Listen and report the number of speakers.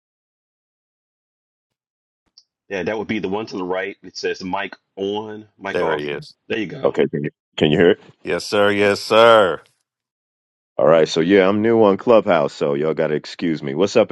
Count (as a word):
three